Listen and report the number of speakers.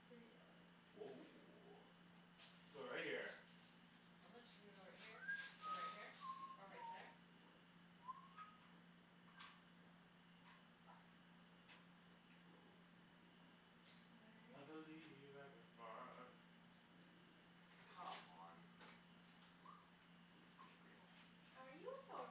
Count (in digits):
4